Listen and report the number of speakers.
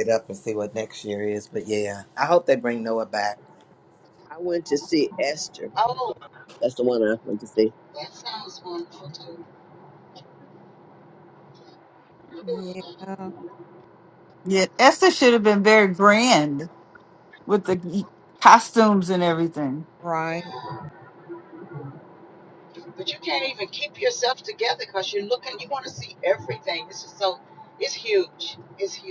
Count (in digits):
5